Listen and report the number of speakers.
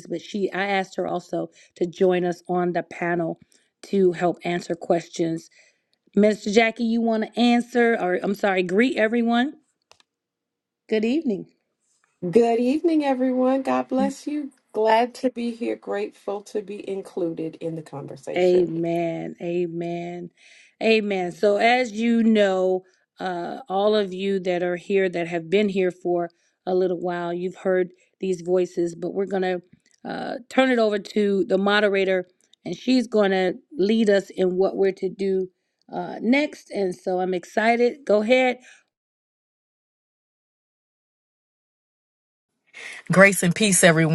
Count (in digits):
3